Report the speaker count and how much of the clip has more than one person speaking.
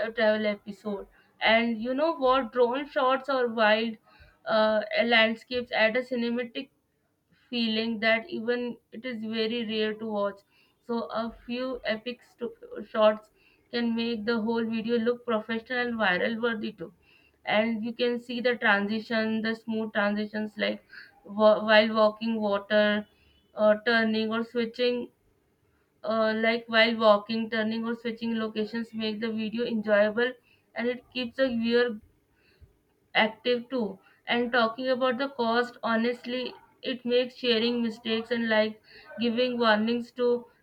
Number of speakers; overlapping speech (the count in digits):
1, no overlap